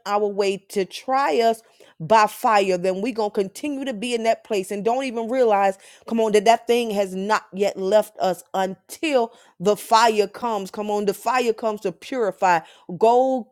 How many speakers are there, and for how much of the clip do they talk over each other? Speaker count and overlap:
1, no overlap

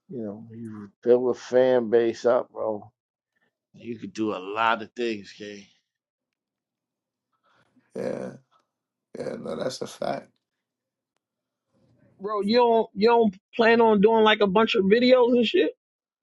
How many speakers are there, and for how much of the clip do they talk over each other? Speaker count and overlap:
3, no overlap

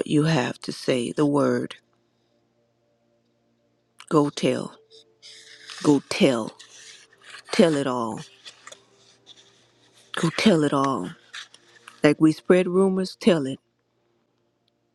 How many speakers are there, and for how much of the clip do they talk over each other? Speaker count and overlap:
1, no overlap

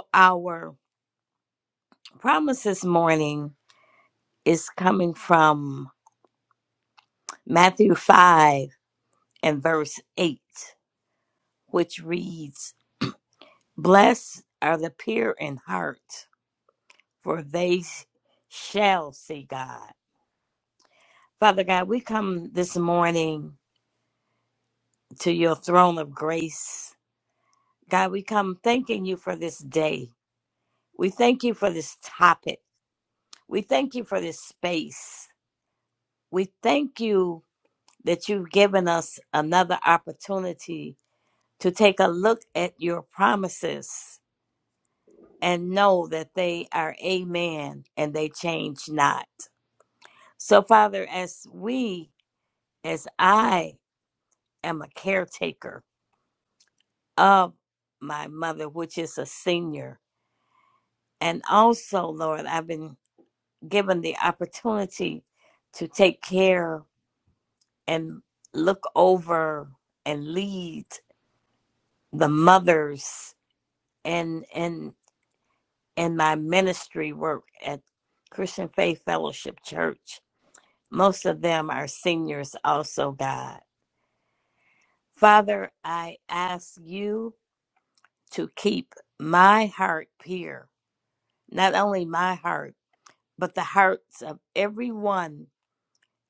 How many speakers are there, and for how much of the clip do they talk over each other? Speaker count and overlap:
1, no overlap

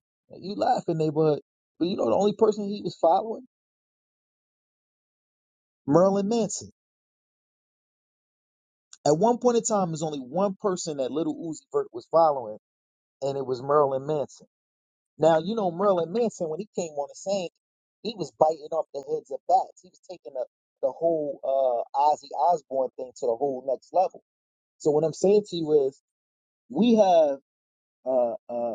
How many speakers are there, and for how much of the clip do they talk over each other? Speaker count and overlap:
1, no overlap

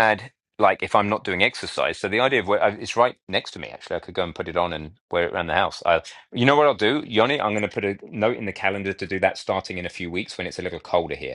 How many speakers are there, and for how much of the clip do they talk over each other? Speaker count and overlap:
1, no overlap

